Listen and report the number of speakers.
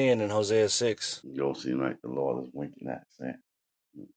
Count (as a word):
two